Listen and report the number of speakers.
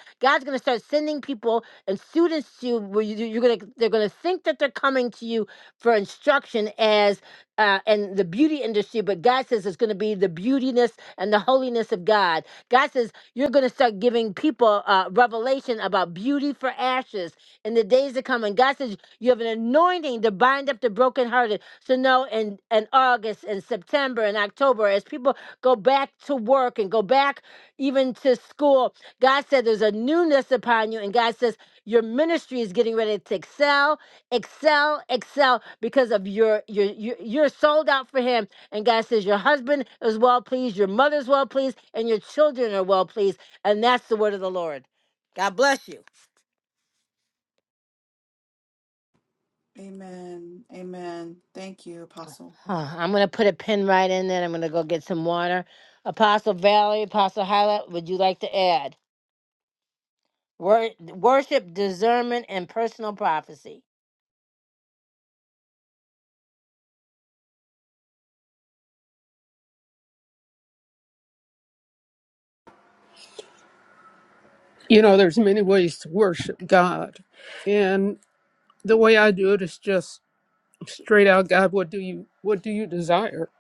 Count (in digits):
3